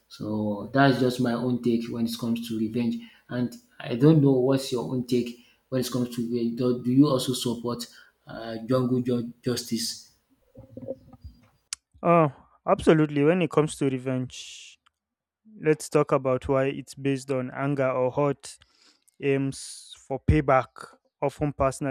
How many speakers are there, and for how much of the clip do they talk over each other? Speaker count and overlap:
2, no overlap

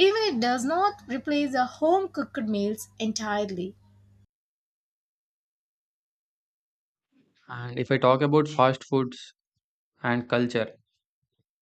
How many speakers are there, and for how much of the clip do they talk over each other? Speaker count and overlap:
2, no overlap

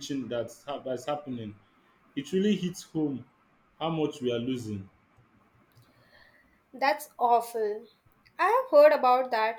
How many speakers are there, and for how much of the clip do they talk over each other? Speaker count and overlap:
2, no overlap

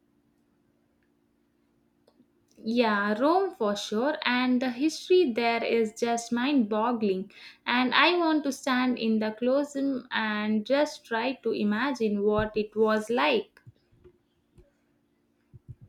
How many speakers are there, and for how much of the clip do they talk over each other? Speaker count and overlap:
1, no overlap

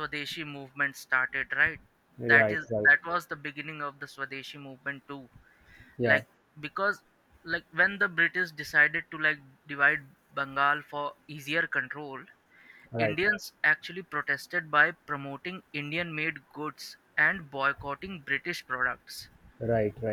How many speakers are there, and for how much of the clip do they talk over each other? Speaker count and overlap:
2, about 5%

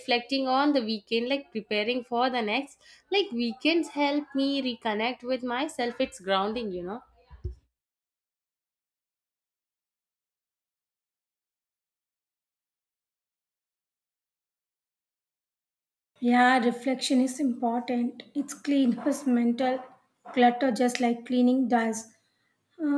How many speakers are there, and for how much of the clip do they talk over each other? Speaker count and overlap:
2, no overlap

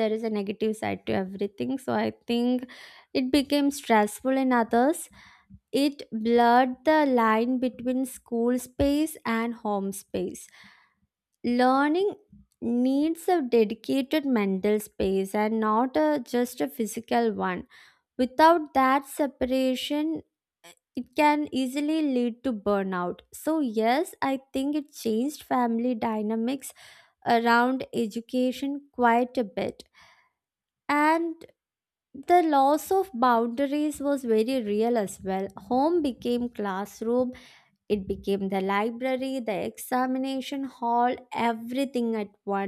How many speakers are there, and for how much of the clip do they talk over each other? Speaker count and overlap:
1, no overlap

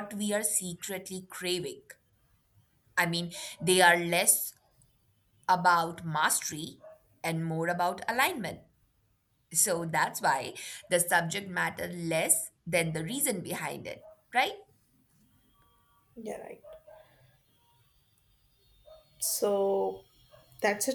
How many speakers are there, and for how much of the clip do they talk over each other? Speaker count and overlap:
2, no overlap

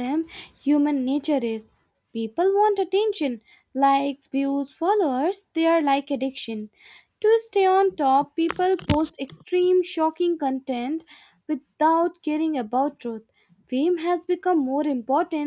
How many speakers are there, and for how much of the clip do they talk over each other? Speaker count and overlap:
1, no overlap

